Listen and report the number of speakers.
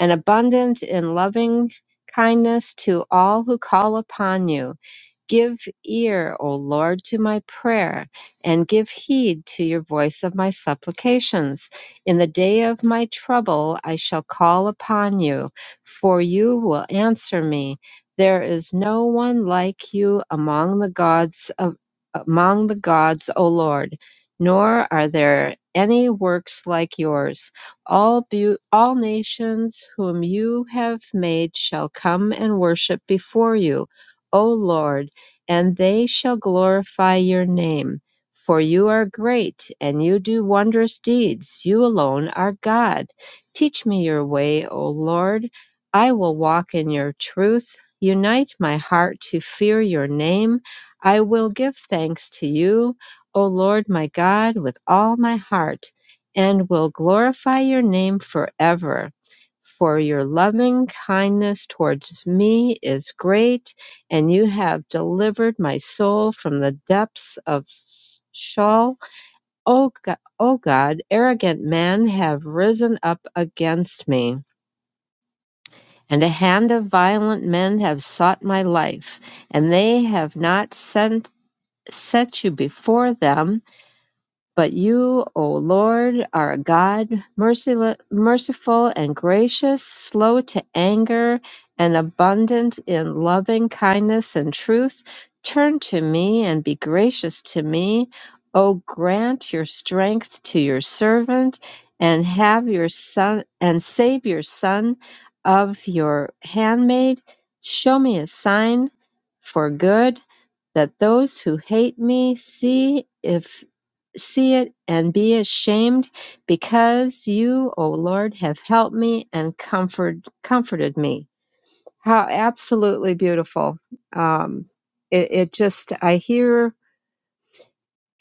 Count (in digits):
1